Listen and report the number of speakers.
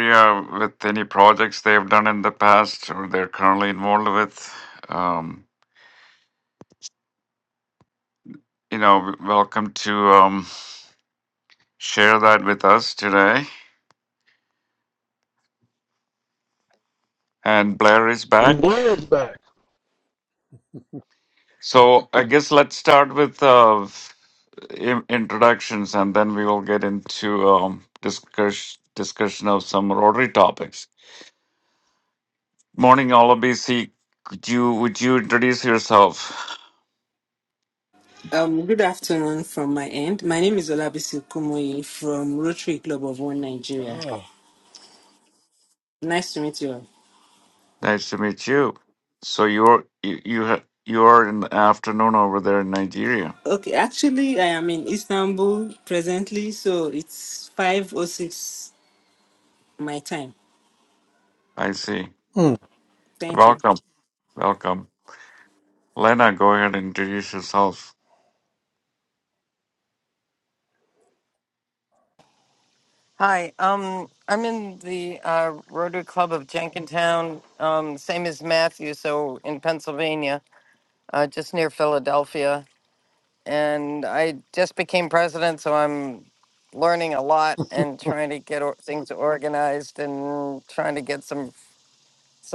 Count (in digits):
4